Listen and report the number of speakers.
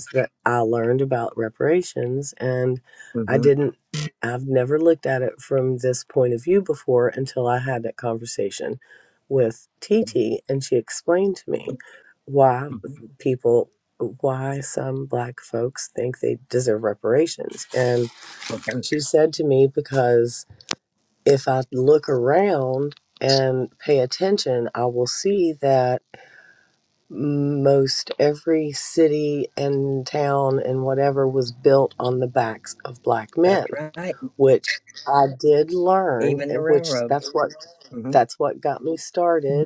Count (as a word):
two